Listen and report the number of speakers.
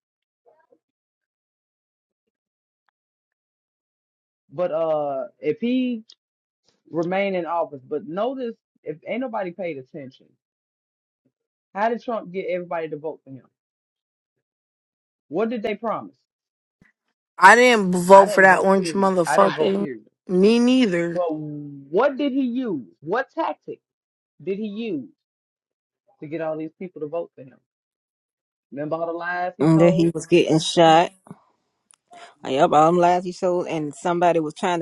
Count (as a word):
three